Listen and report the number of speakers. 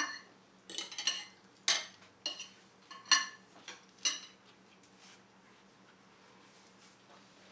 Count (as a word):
zero